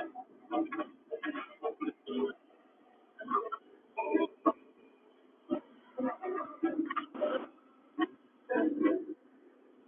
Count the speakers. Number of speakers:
0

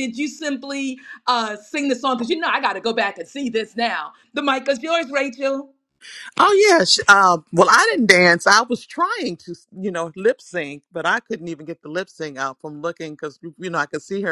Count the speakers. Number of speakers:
2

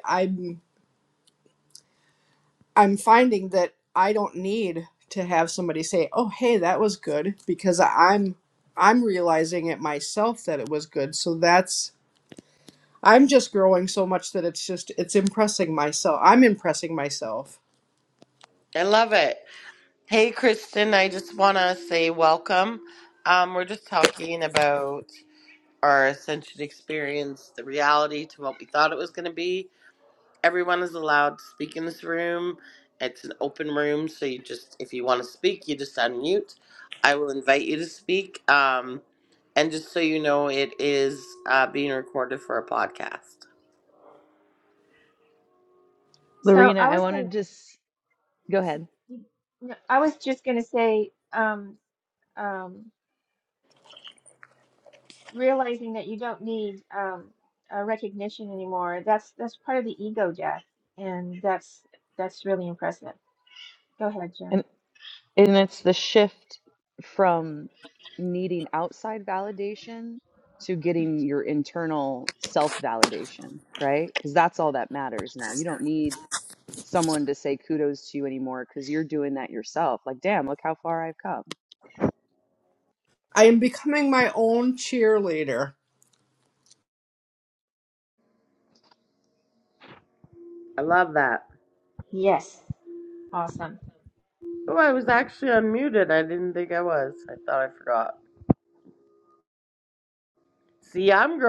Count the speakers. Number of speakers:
4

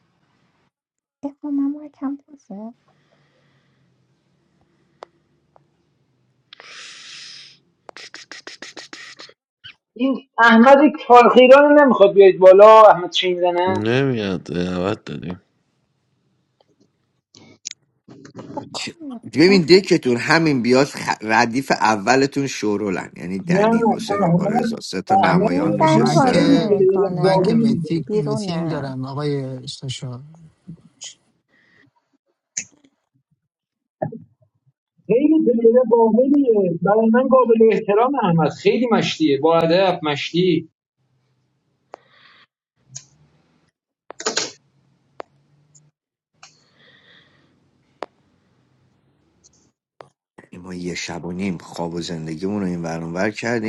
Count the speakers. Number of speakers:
5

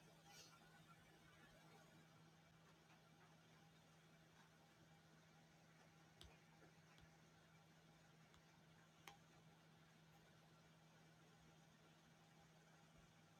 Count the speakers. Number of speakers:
0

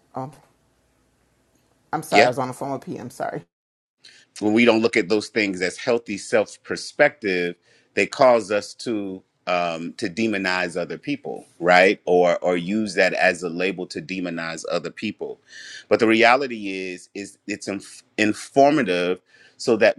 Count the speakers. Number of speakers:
2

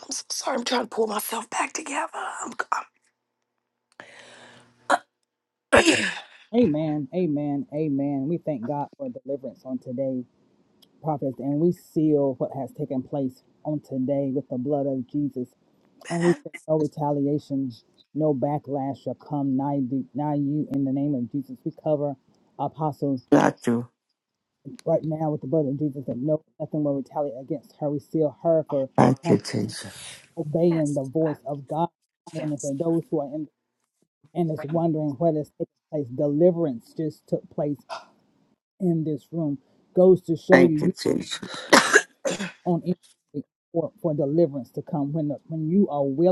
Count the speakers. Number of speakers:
3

